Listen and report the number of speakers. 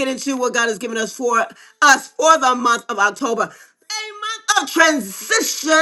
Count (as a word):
one